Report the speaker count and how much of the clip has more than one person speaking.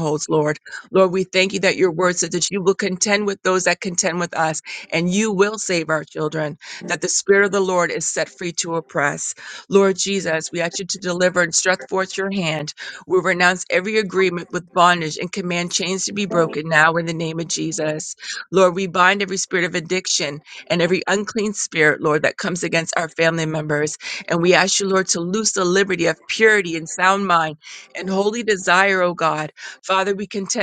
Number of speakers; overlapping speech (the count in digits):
1, no overlap